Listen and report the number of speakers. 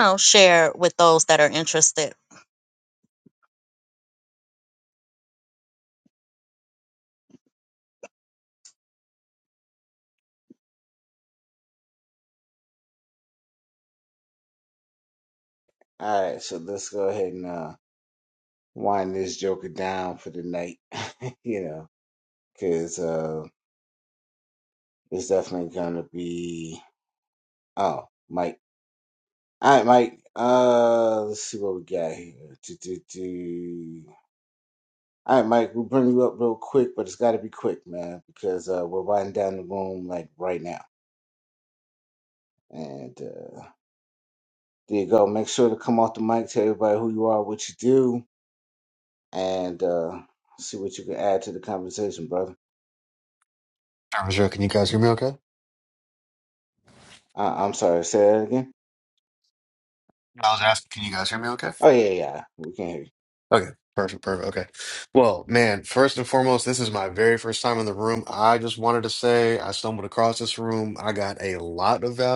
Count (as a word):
three